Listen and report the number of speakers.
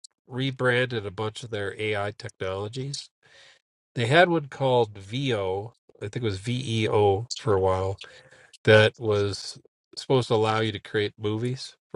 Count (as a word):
one